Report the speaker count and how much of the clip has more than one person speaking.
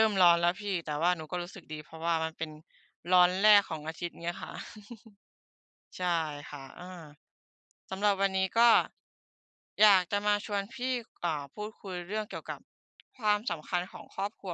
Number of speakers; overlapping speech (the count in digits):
1, no overlap